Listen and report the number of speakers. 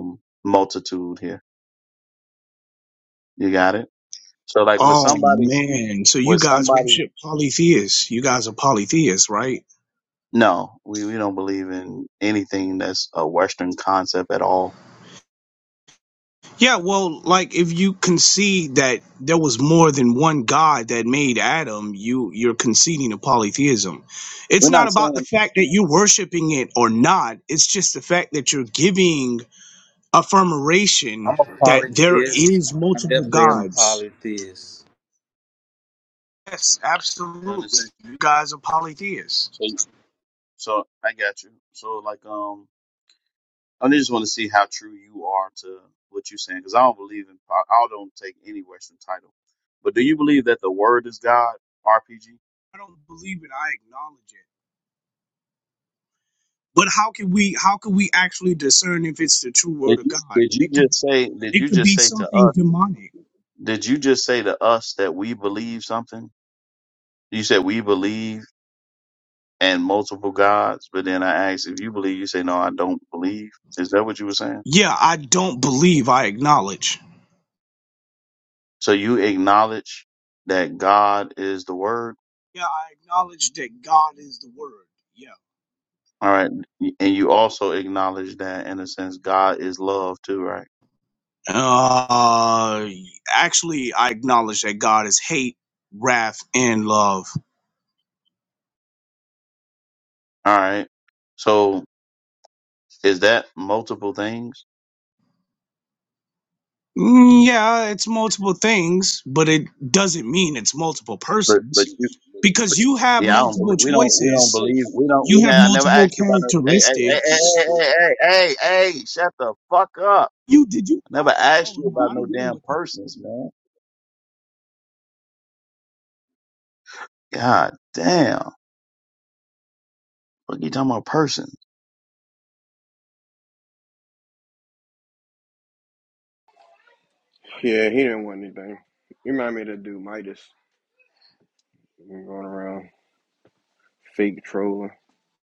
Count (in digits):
4